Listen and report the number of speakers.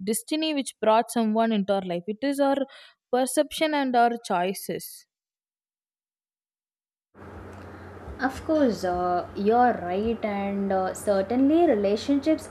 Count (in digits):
2